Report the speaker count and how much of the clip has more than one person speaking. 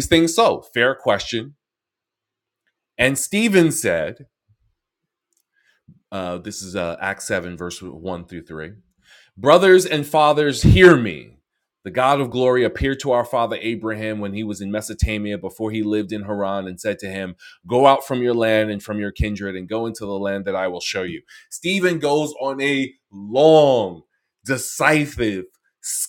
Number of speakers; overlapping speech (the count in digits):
1, no overlap